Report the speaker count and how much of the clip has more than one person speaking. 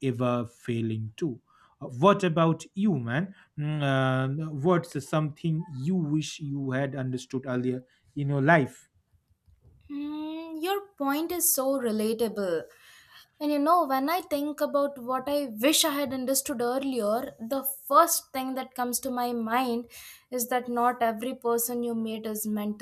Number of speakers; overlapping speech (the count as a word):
two, no overlap